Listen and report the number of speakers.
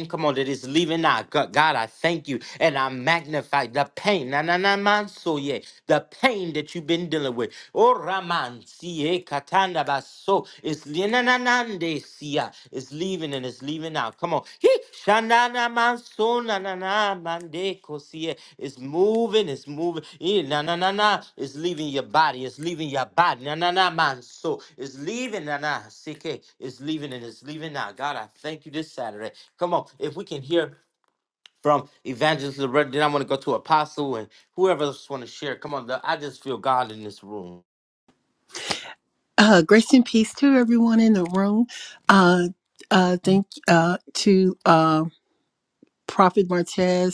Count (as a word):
two